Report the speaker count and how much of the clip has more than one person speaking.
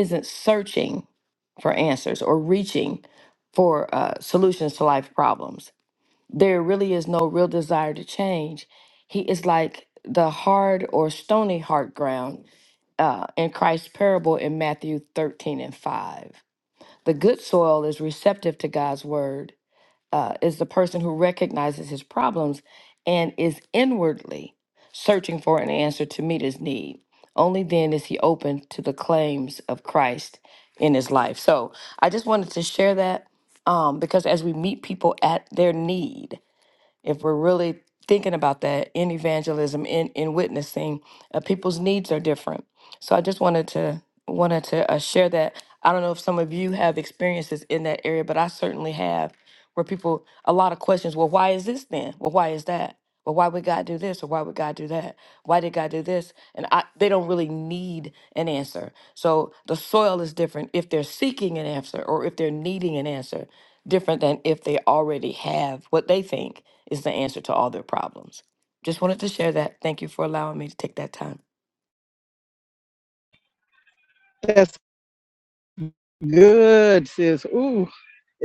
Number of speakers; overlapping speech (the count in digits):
2, no overlap